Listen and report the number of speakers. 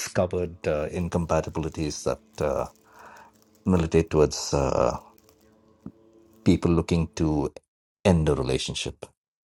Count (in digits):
1